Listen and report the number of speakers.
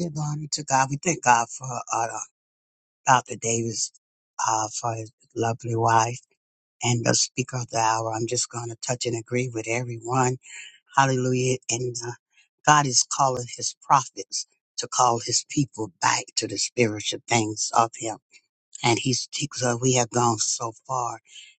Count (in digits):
1